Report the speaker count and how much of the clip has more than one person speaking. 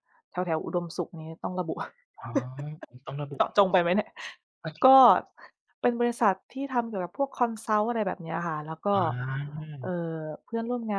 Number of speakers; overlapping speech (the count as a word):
two, under 1%